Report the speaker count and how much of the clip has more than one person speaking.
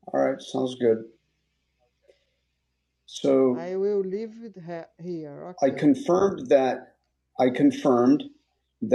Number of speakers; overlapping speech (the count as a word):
two, about 5%